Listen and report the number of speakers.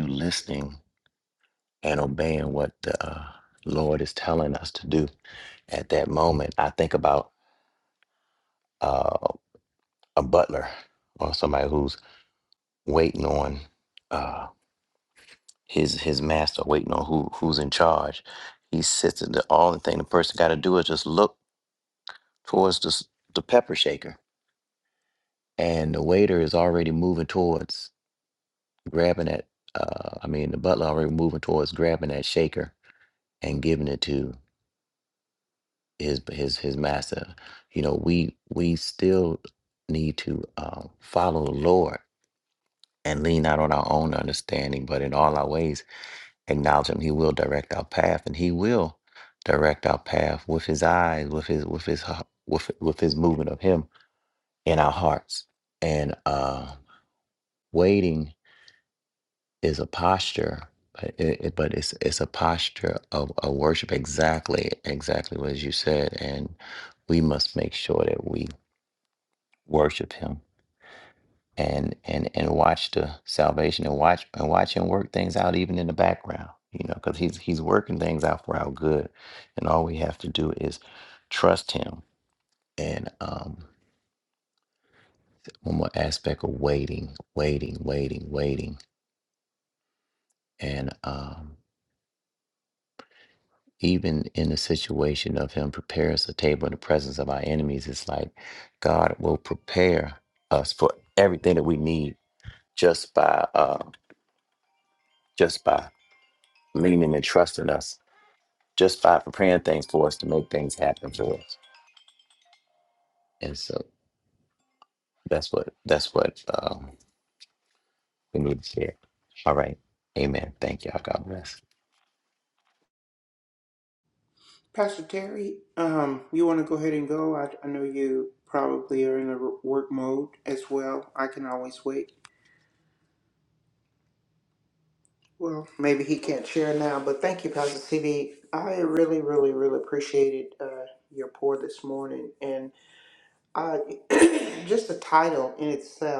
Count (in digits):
2